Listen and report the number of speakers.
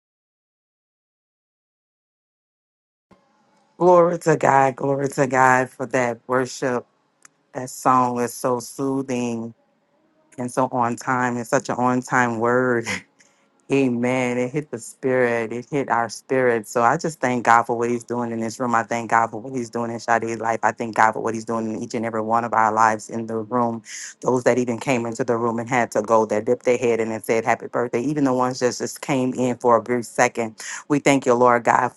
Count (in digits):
1